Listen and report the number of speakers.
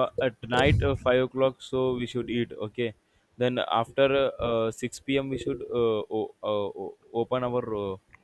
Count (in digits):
1